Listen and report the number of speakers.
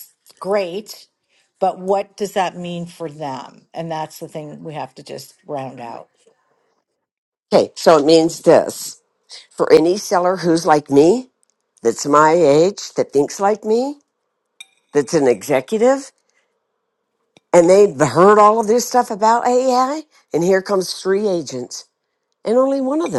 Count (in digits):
2